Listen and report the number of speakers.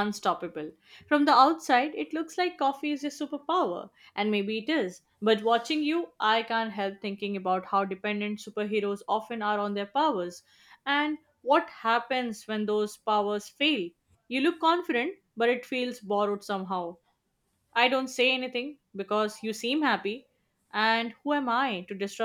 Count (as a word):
one